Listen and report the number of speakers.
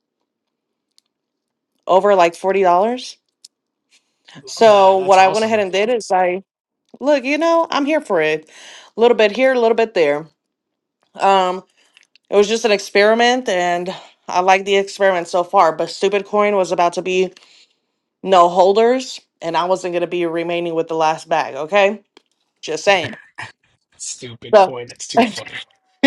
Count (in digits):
2